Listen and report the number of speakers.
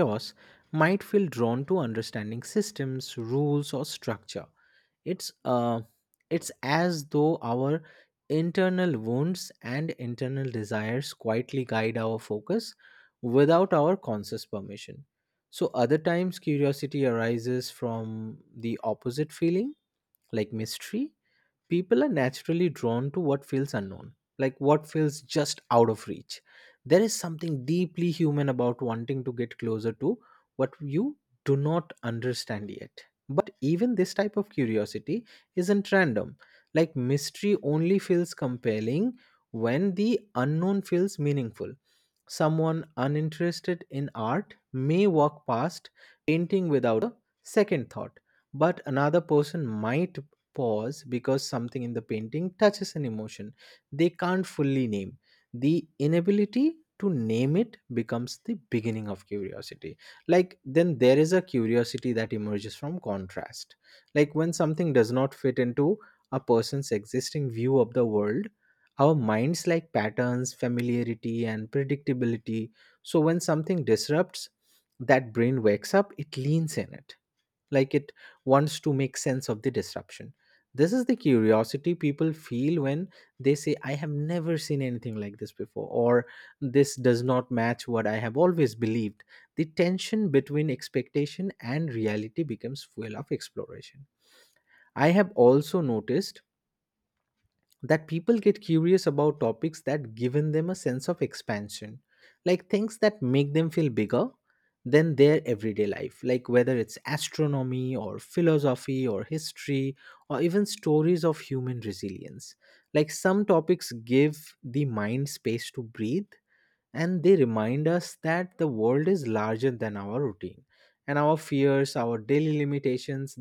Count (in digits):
1